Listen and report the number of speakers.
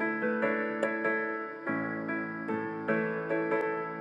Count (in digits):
0